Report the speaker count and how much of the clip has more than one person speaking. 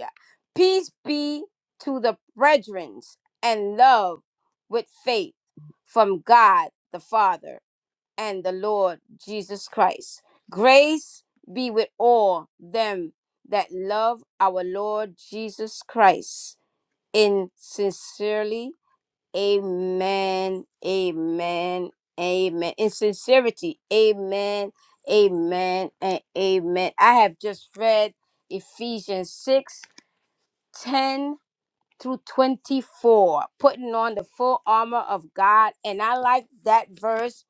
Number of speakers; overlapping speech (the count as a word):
one, no overlap